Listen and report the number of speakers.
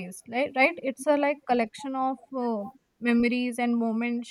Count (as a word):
one